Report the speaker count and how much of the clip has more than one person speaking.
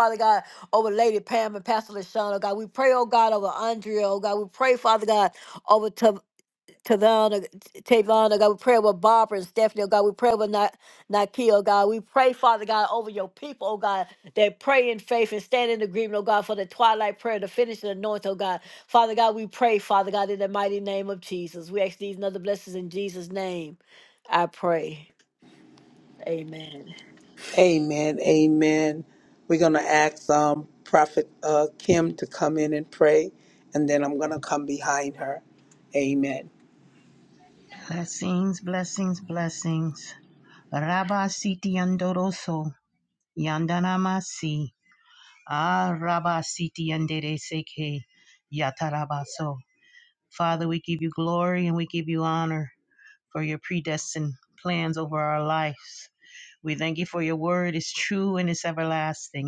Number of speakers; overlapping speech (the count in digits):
3, no overlap